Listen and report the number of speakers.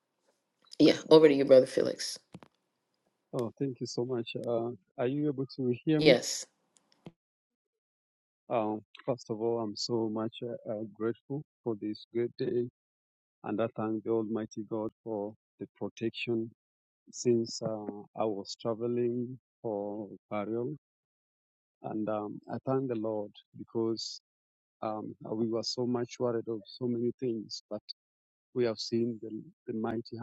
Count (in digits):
2